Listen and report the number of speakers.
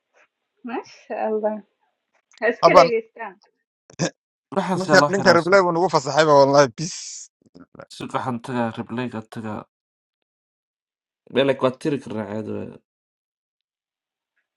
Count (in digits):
3